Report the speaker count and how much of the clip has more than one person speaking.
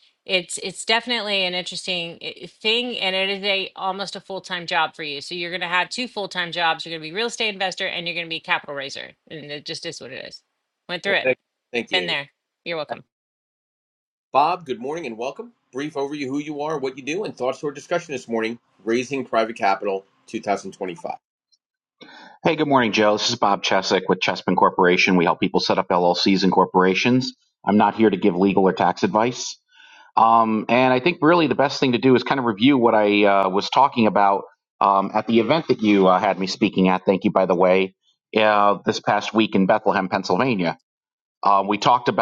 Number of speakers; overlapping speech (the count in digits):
3, about 1%